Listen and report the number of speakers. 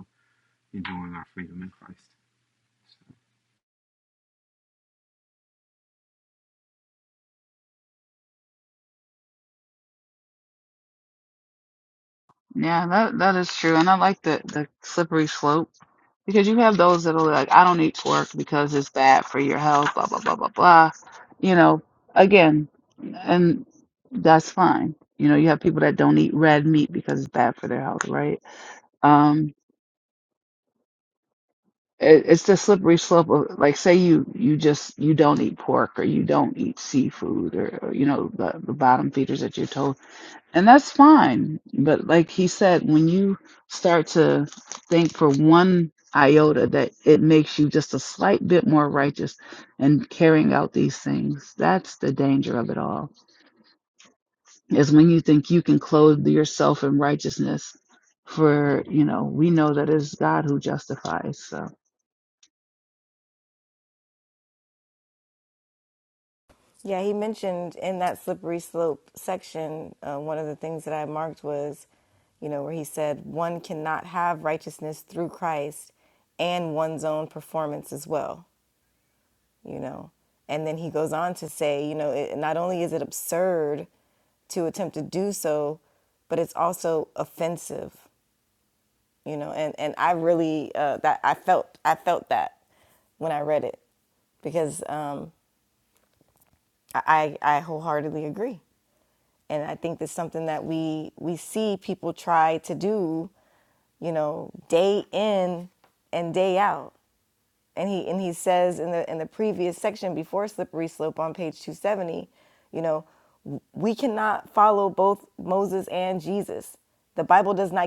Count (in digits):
3